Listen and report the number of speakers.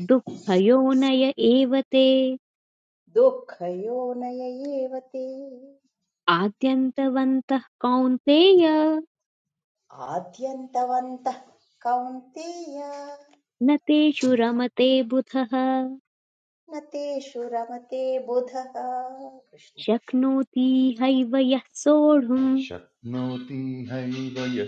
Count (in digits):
3